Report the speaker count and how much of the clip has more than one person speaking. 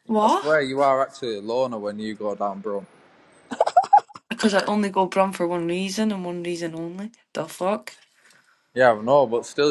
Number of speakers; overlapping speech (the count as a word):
two, about 3%